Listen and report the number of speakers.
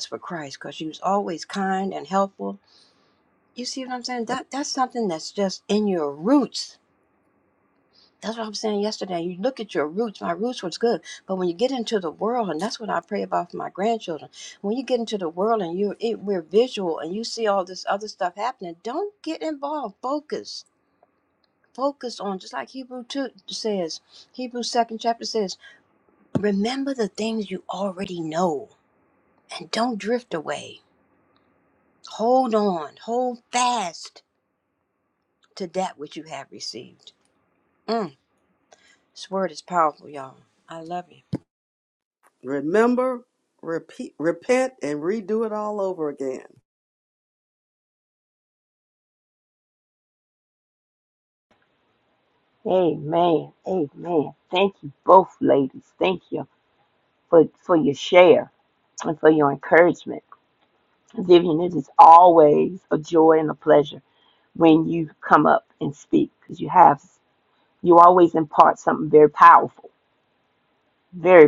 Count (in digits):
3